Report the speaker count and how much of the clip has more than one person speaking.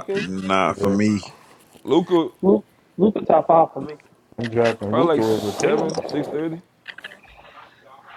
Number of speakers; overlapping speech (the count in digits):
4, about 12%